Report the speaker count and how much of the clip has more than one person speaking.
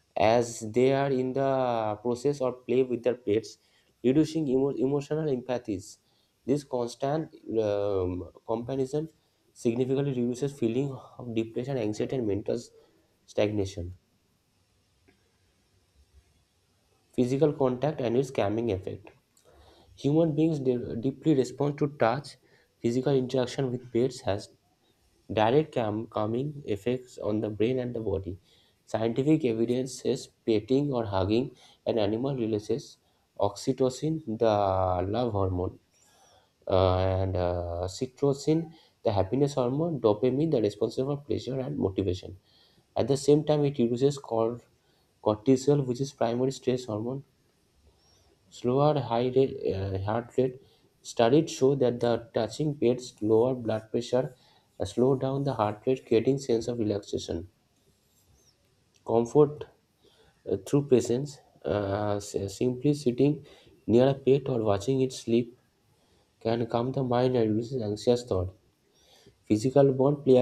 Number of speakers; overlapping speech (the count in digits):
1, no overlap